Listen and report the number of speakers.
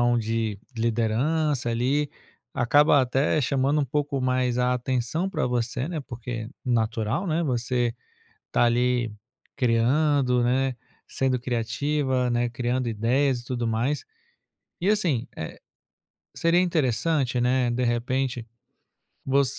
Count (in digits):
1